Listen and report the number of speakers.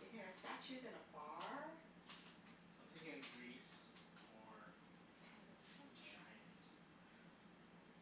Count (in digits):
2